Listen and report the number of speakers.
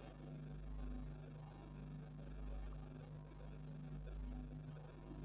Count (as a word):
zero